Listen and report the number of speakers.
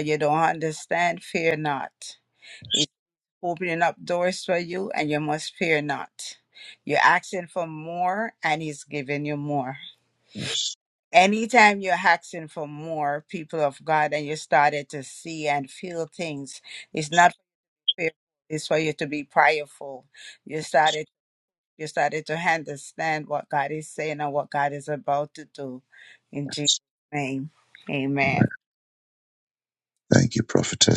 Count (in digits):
2